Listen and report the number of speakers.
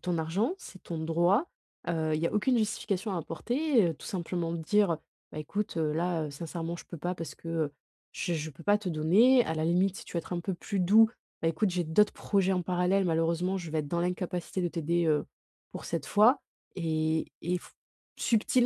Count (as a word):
one